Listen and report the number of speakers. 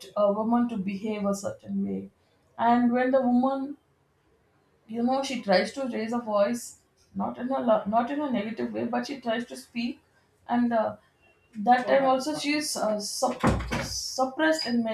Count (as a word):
one